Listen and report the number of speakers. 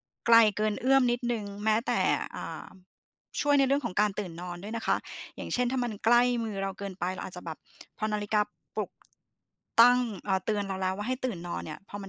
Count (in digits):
1